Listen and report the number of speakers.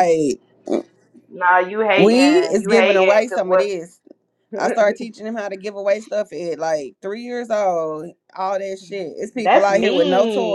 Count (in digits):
2